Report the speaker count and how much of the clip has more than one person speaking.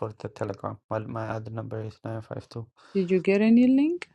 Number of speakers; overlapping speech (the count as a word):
two, no overlap